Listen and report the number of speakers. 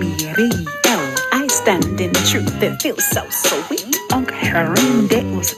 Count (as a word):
one